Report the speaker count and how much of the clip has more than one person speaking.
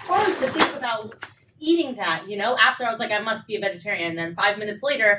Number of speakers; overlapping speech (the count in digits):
1, no overlap